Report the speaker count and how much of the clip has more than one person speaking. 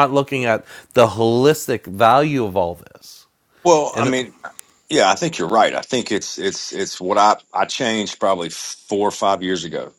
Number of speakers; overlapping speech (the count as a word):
two, about 2%